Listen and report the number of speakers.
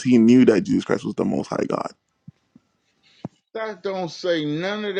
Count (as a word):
two